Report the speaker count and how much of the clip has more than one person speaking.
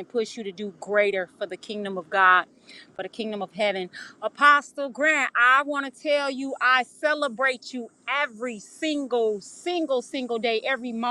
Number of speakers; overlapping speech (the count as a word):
one, no overlap